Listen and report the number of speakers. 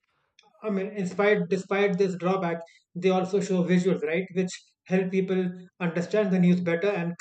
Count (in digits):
1